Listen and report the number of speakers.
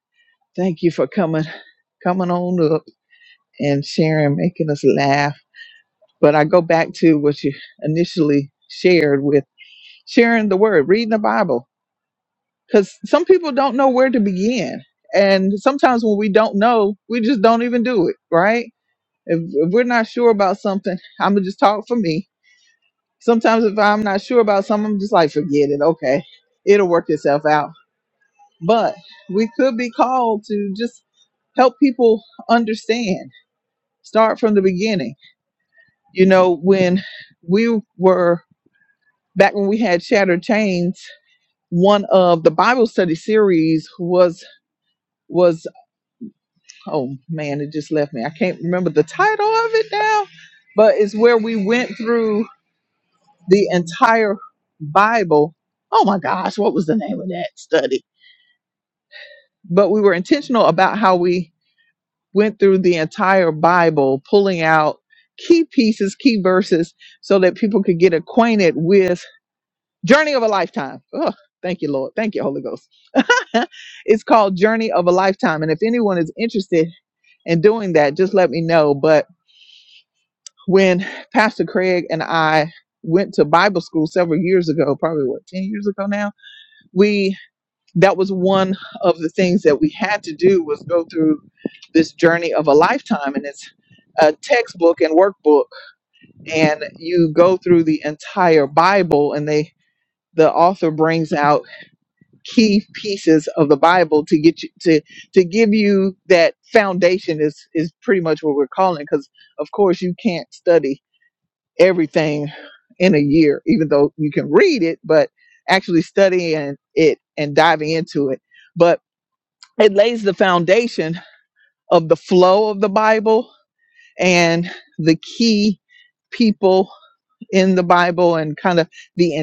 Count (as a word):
one